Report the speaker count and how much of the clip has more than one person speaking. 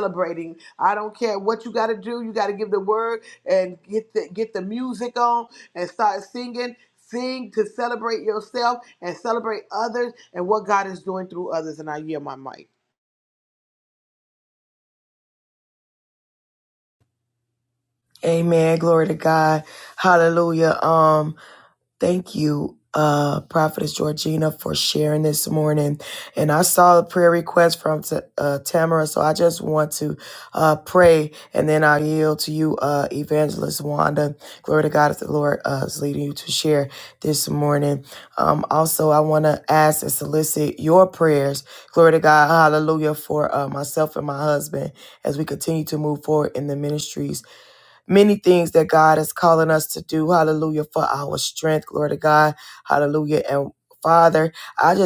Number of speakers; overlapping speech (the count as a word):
two, no overlap